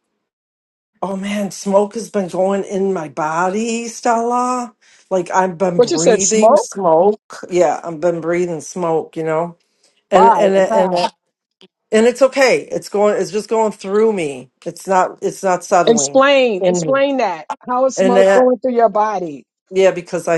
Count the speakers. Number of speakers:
2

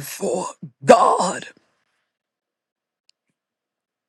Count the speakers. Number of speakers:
1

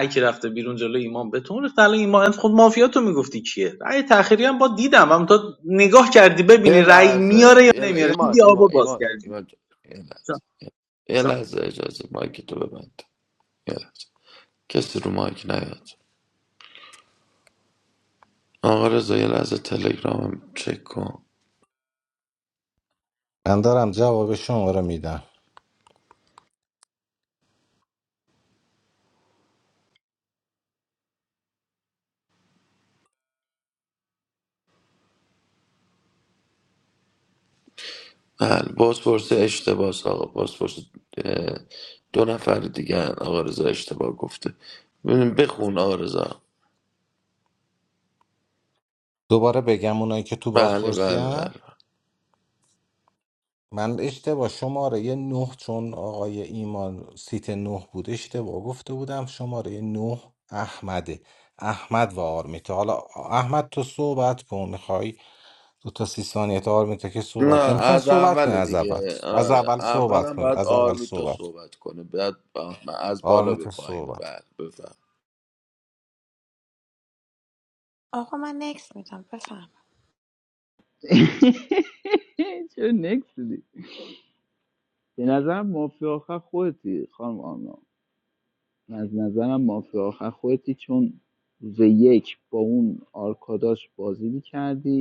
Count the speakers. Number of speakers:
5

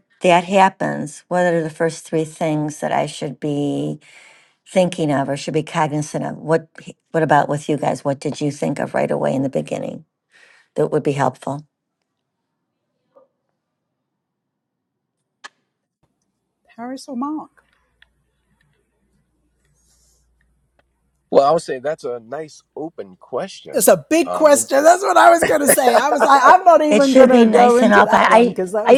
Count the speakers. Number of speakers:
3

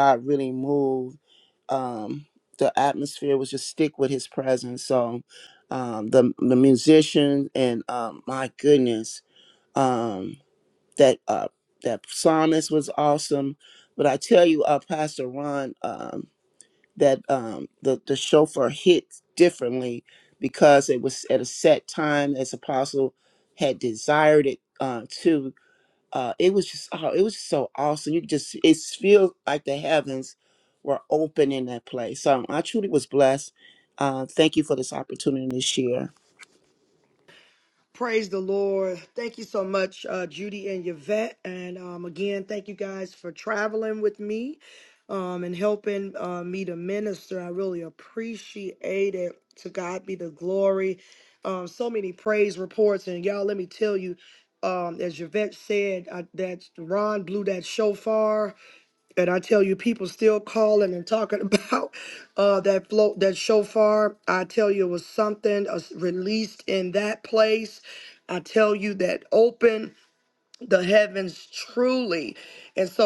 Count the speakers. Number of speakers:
2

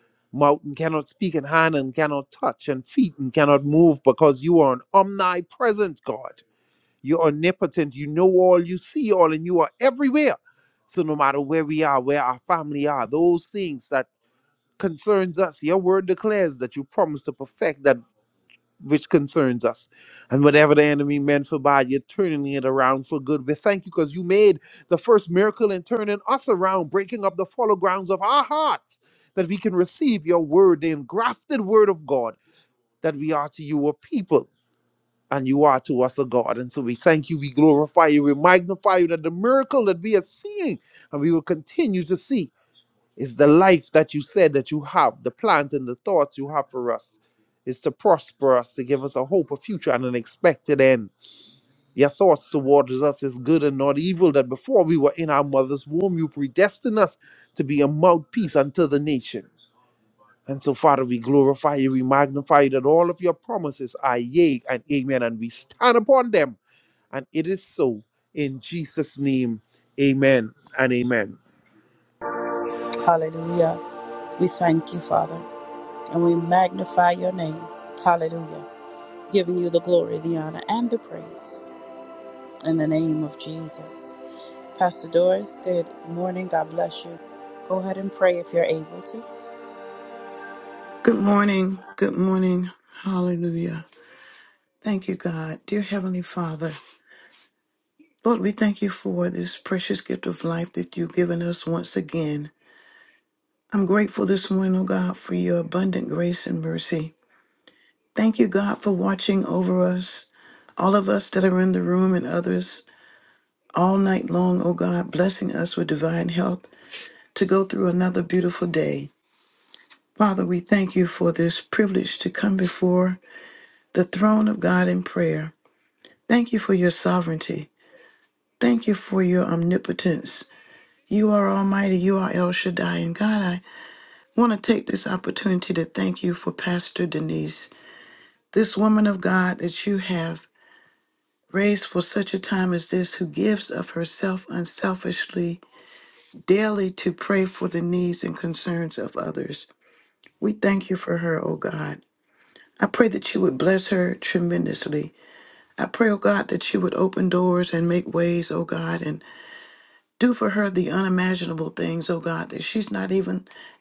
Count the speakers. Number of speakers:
3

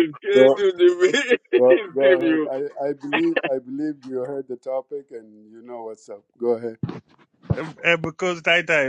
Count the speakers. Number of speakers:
3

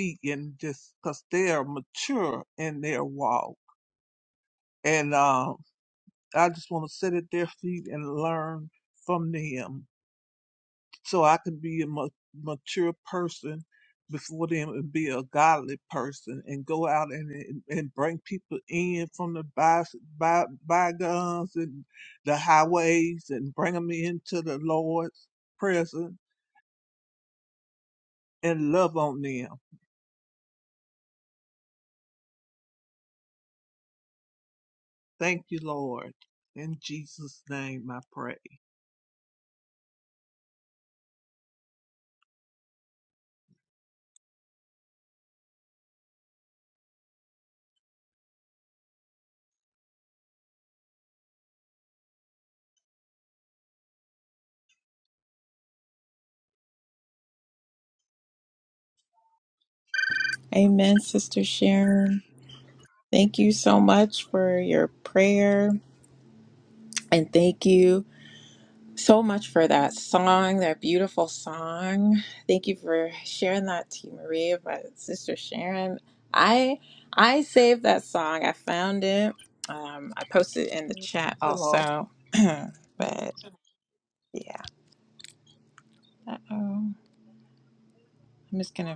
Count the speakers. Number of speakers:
2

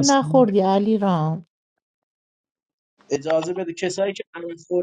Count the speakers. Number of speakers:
2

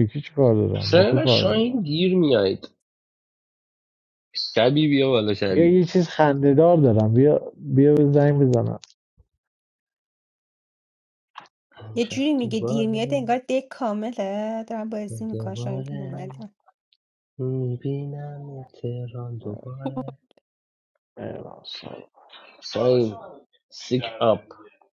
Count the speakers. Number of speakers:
3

